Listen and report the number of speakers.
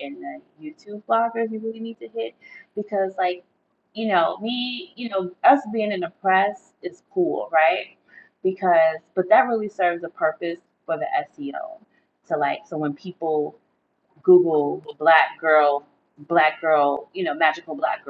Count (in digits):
1